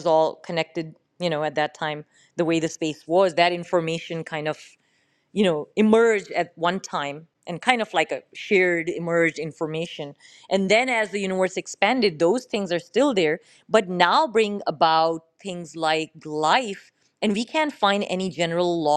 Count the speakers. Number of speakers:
one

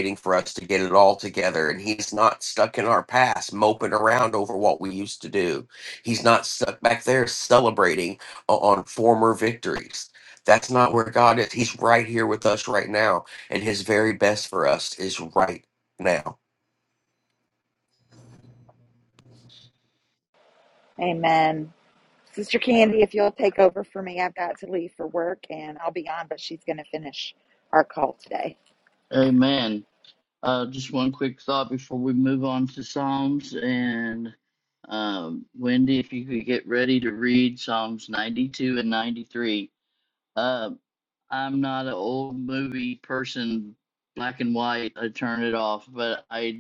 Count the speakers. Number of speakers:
three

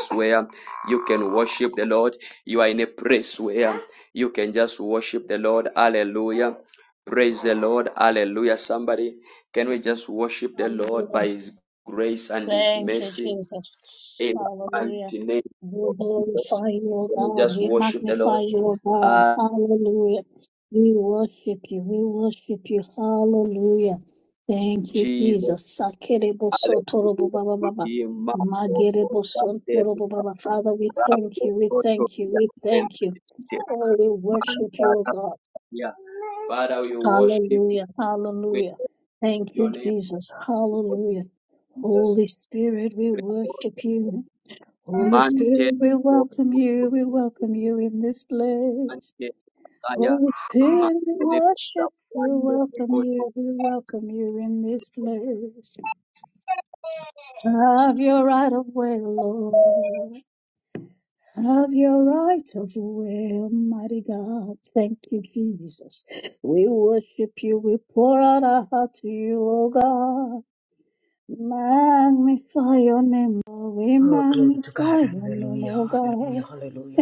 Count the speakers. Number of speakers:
three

